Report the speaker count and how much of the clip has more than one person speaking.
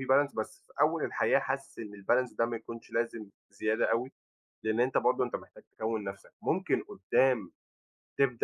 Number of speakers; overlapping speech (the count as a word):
one, no overlap